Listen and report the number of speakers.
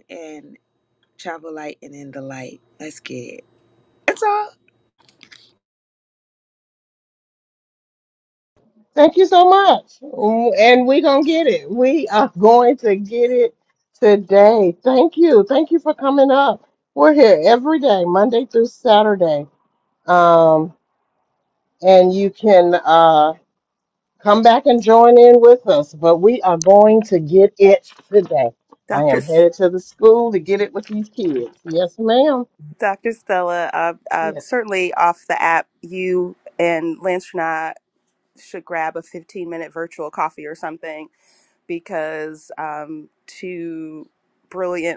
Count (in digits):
3